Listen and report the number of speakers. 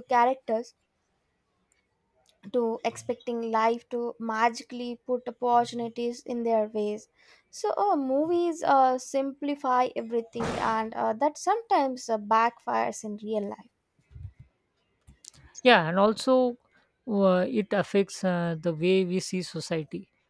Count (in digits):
2